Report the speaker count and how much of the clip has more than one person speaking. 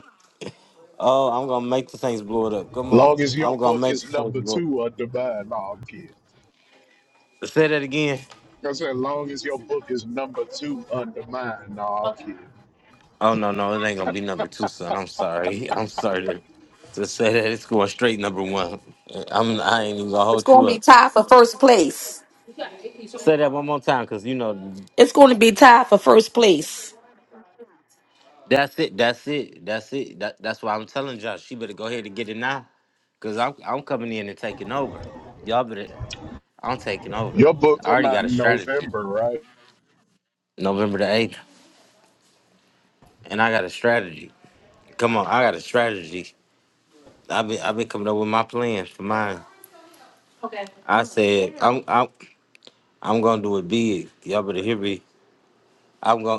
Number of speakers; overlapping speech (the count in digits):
3, about 6%